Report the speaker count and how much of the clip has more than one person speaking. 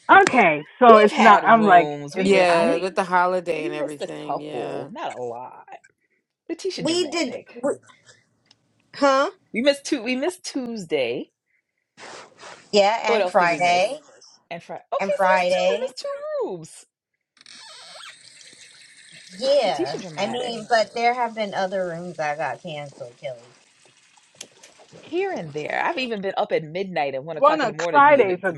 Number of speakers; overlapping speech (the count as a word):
four, about 28%